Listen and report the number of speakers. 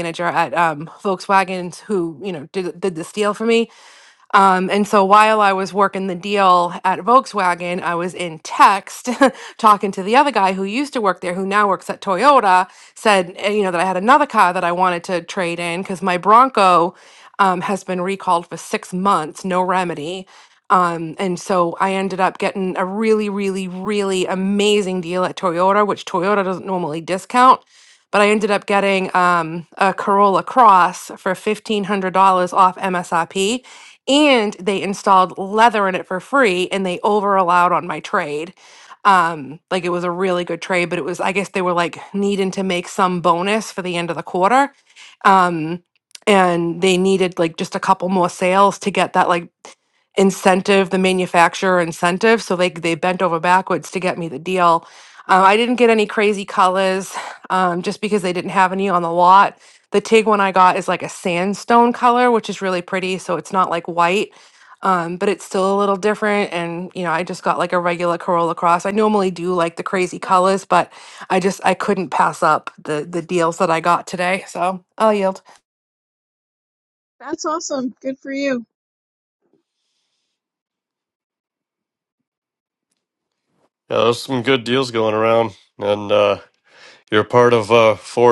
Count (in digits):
3